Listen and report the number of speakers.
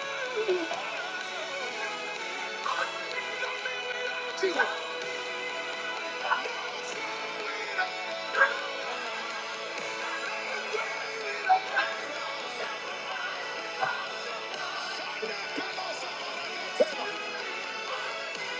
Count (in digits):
0